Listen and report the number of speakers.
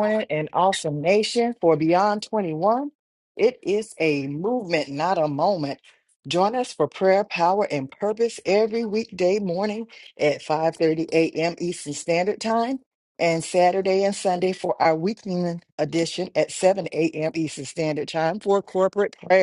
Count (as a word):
one